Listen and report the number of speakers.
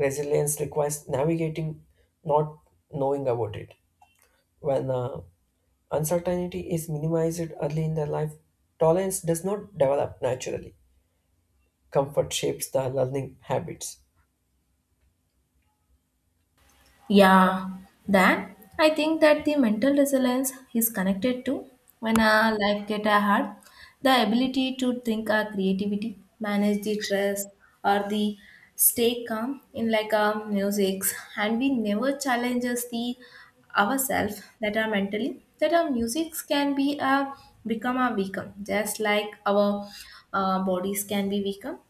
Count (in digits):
2